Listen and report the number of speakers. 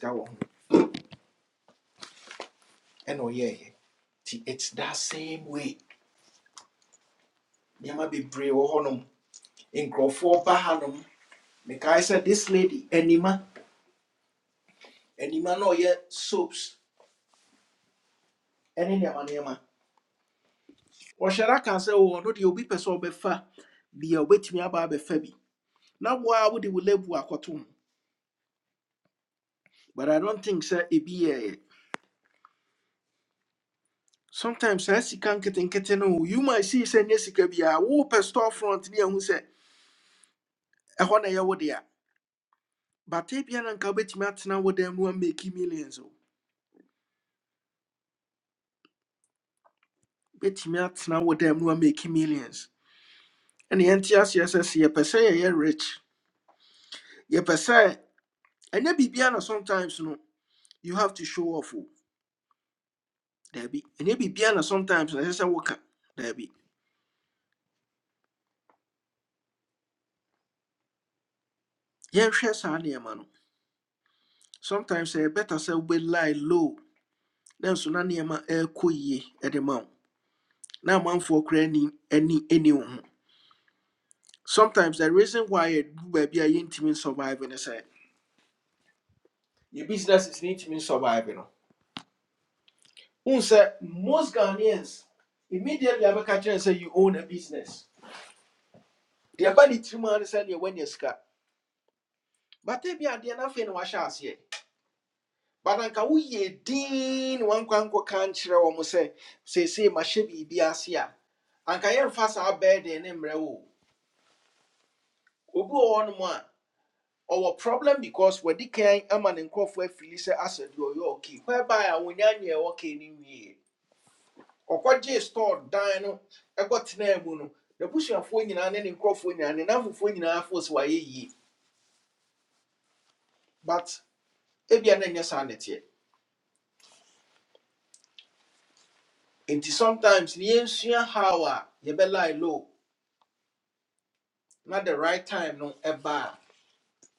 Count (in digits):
1